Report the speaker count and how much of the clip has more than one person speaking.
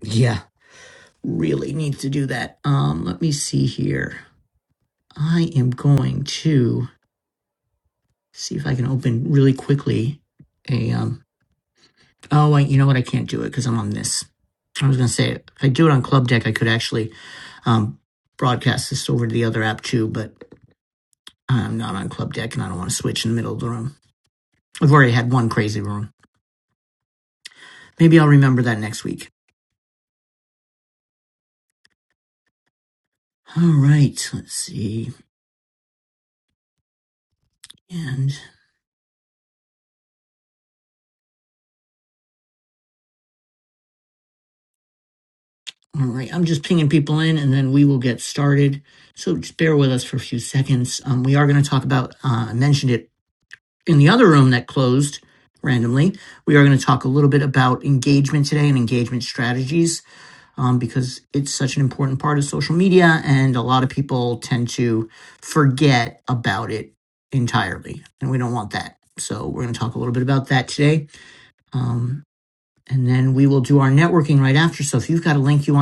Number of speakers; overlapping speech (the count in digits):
1, no overlap